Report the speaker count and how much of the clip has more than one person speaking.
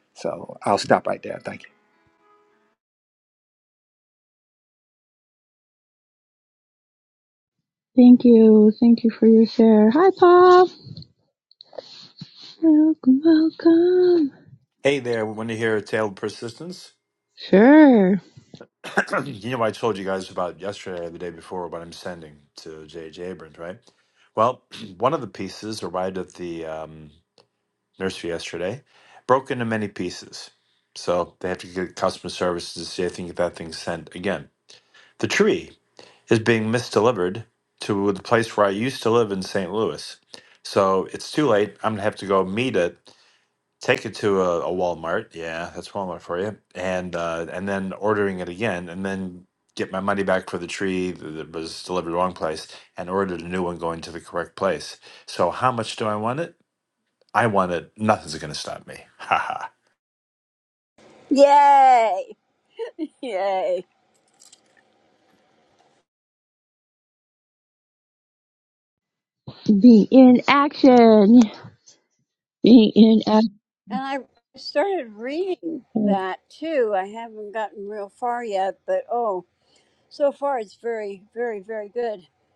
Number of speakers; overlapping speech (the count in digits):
4, under 1%